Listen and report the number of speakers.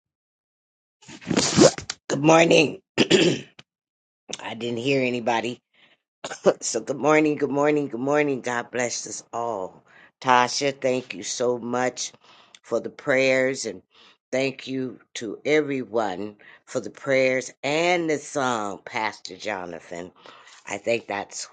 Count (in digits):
1